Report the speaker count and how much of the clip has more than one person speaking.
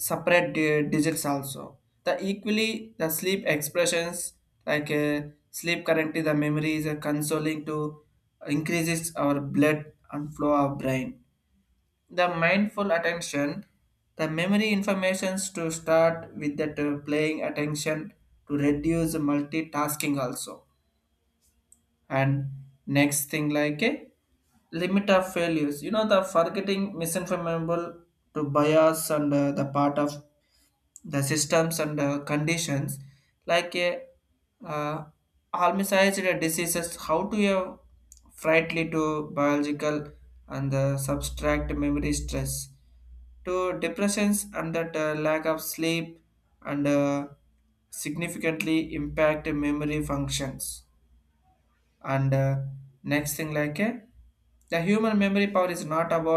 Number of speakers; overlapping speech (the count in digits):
1, no overlap